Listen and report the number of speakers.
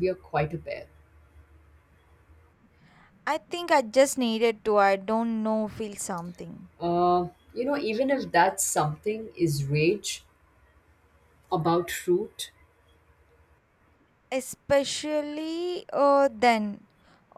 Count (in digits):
2